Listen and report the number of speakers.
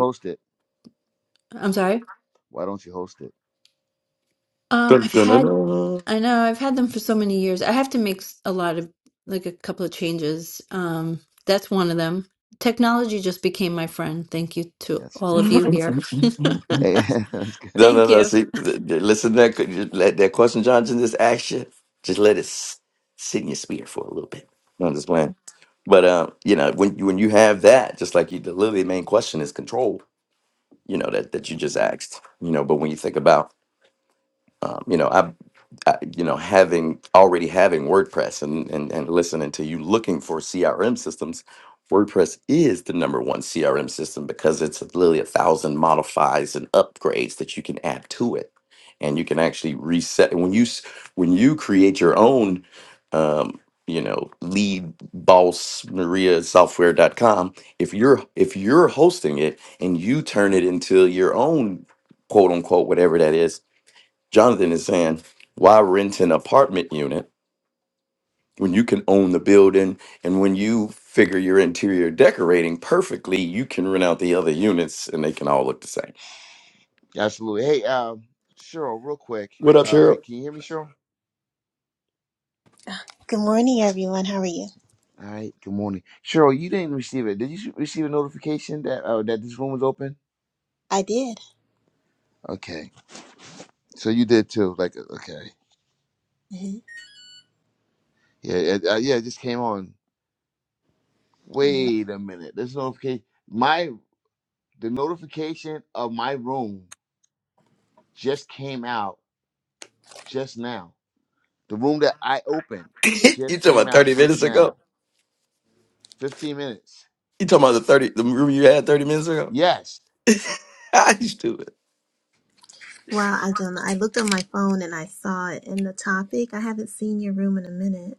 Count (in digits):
4